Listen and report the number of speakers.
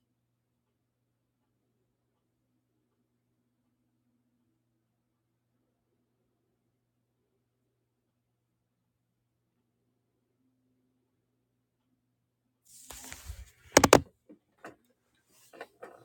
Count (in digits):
0